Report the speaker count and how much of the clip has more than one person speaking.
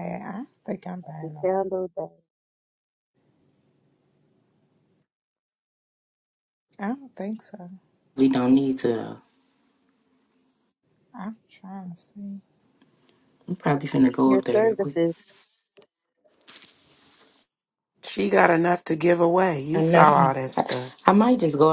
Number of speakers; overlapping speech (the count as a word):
four, about 7%